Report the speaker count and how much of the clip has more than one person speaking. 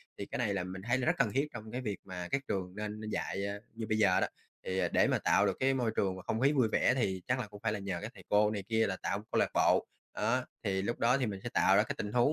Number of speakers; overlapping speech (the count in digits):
1, no overlap